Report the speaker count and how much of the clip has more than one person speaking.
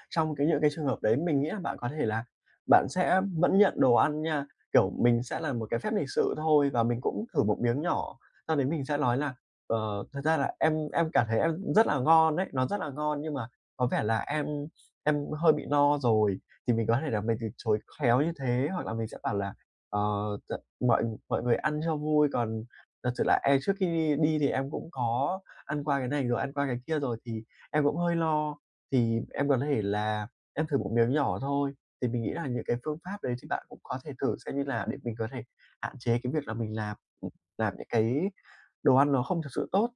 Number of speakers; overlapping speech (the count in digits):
1, no overlap